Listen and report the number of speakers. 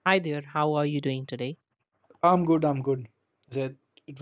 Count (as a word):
two